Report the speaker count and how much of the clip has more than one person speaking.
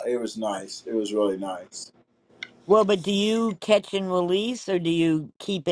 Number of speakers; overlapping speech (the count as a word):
two, no overlap